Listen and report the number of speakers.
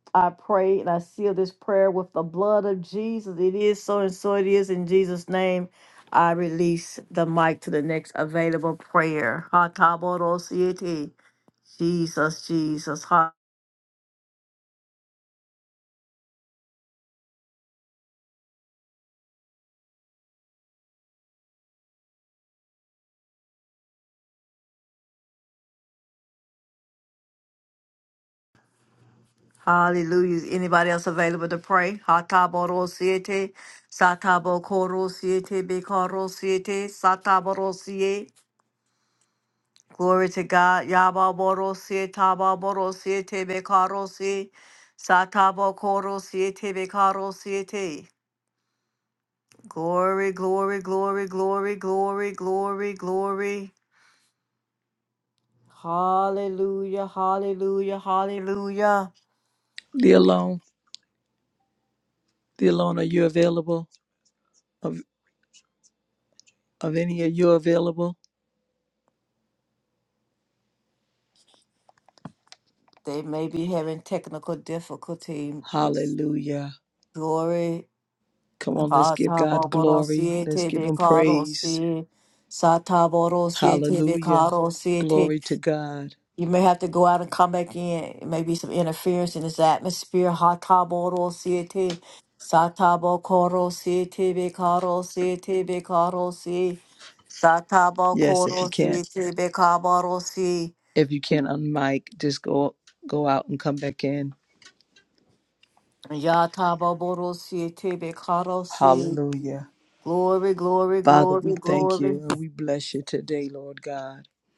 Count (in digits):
2